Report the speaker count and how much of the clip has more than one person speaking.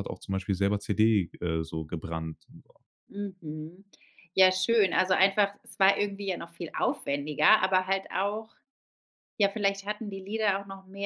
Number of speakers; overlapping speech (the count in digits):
2, no overlap